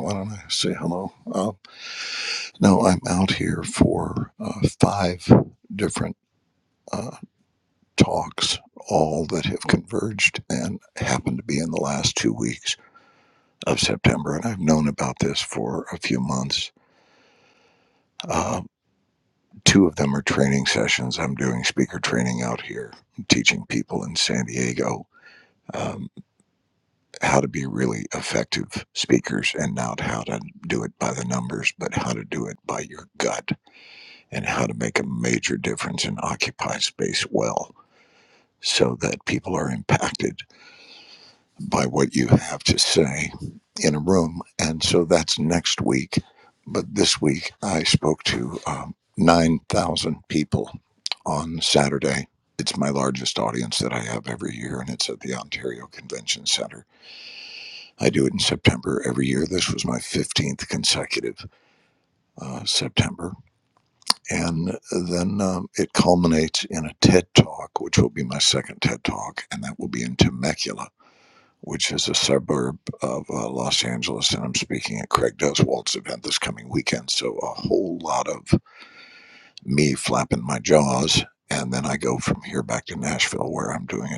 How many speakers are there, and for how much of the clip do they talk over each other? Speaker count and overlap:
1, no overlap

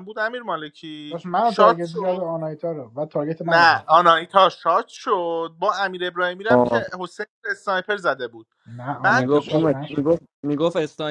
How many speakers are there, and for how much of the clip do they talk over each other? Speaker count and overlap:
3, about 25%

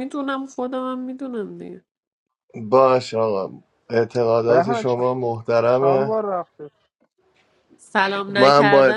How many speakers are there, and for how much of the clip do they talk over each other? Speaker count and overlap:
3, about 17%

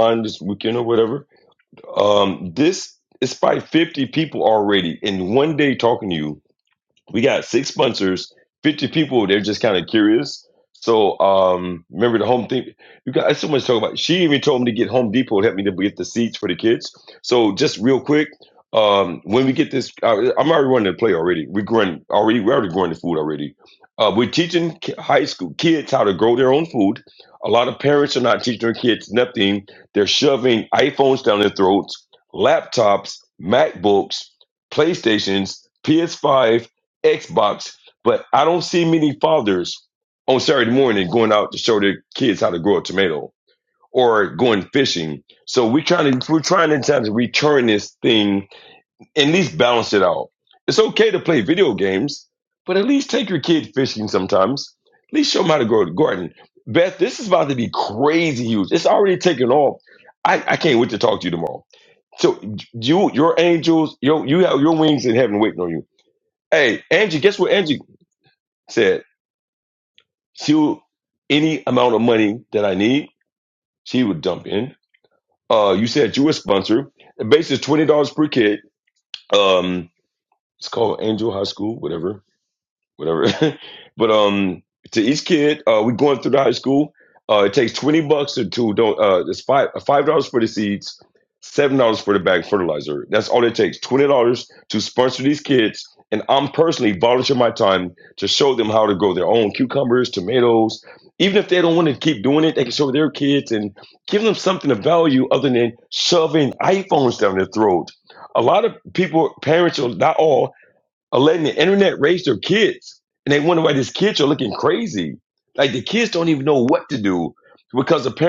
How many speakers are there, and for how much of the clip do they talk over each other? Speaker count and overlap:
1, no overlap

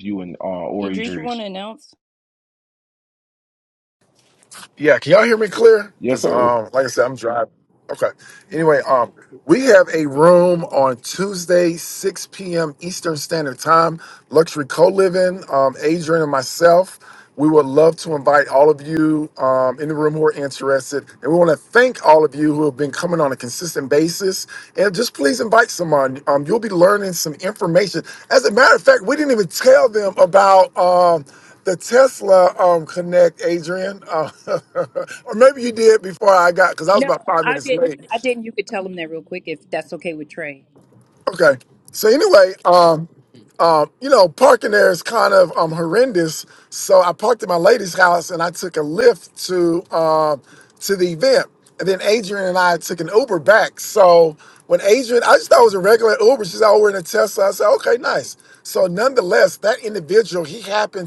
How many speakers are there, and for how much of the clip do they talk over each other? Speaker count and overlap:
3, about 4%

